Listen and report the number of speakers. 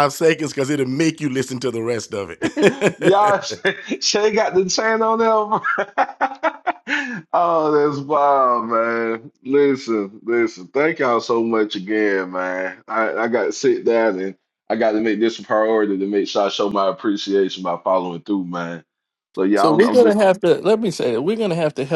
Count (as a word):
three